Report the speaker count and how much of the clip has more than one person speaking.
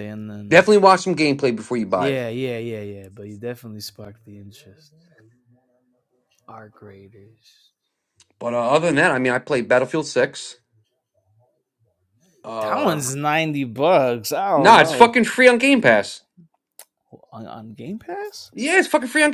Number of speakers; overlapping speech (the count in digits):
2, about 6%